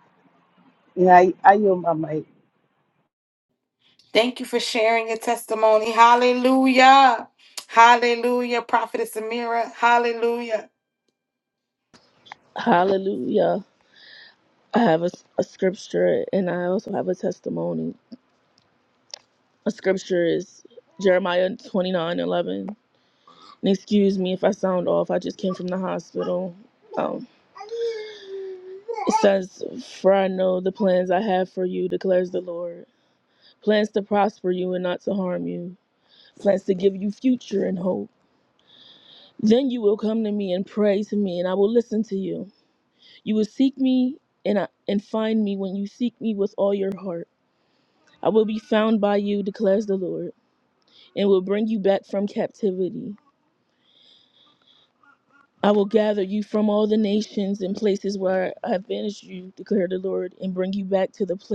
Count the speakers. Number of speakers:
three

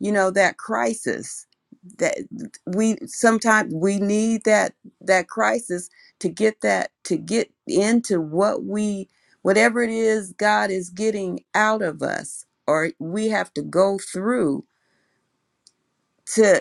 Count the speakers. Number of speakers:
one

